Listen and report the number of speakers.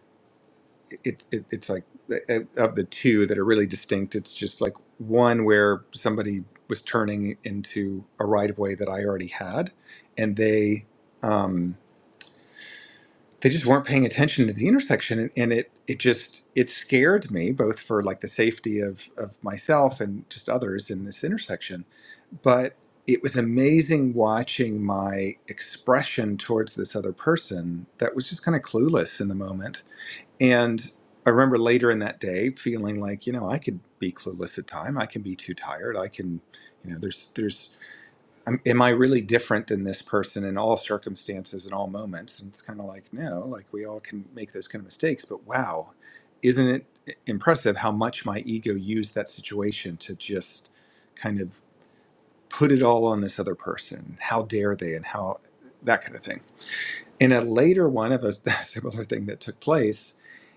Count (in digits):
1